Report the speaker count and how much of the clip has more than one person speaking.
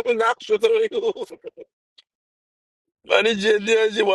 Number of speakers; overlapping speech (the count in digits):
1, no overlap